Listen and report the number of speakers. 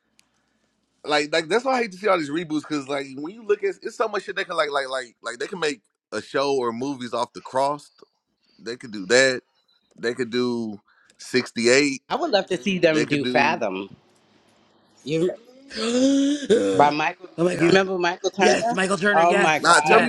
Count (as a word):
three